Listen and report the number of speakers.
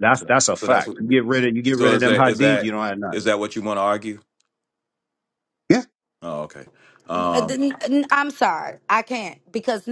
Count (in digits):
3